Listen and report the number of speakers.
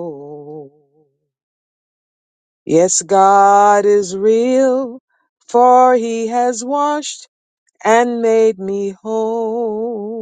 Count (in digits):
1